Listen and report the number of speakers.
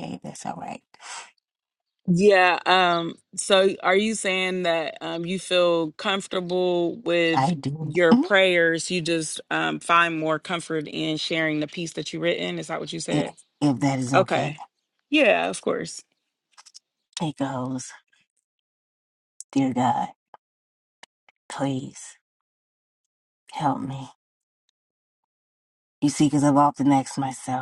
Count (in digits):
2